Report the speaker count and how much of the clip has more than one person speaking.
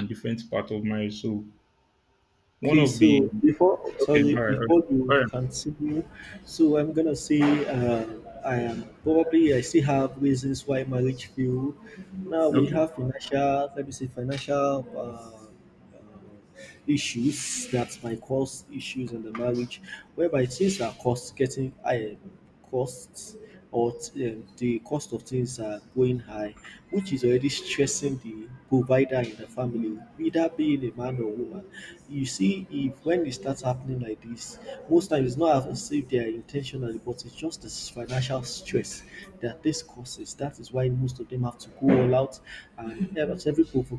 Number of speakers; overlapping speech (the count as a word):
two, about 4%